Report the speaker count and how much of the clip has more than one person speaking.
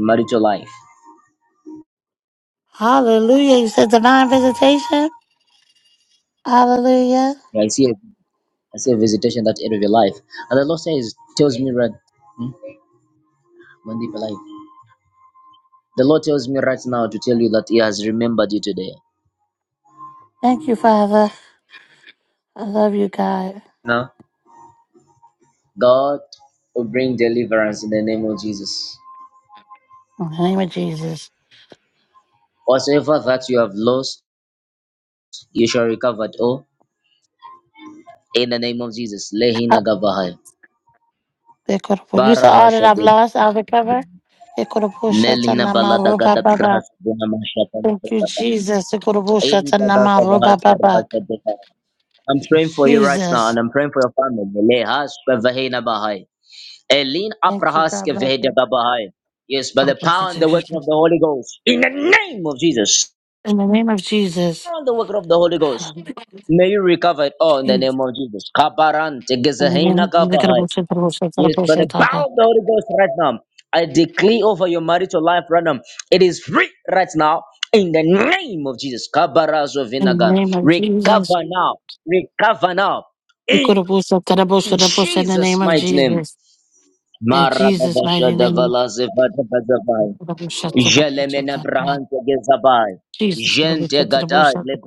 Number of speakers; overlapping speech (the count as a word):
two, about 18%